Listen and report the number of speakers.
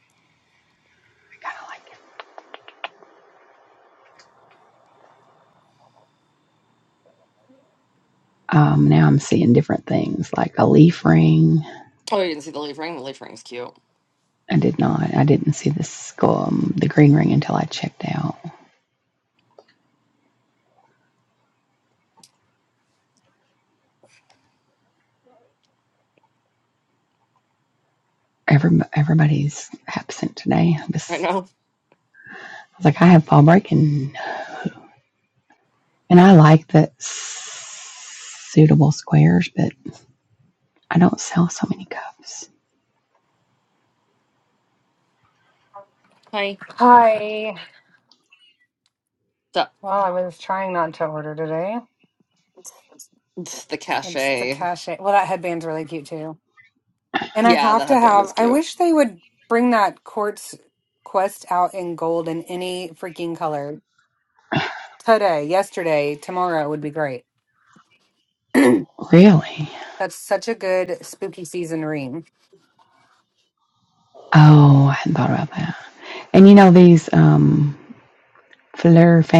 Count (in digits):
3